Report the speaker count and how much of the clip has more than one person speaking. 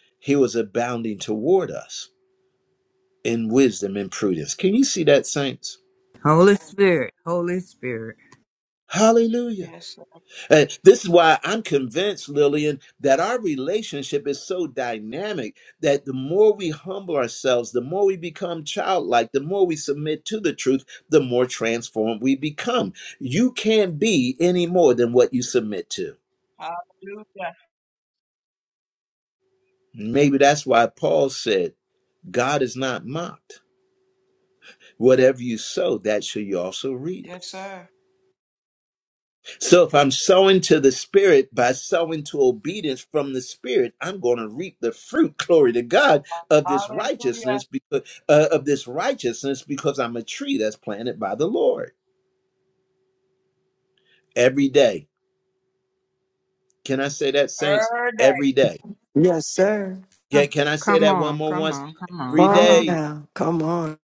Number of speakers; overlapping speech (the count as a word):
four, about 5%